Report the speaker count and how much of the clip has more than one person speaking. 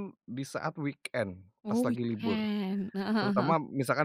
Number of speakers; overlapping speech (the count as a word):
two, about 26%